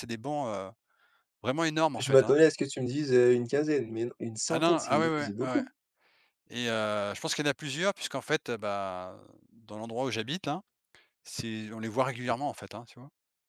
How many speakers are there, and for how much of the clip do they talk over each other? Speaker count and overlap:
2, about 11%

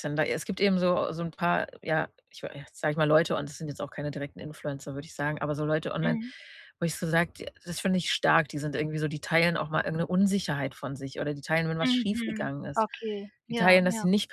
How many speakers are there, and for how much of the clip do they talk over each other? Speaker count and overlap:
2, about 12%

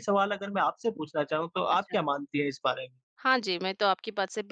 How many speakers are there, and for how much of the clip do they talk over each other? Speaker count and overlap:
2, about 5%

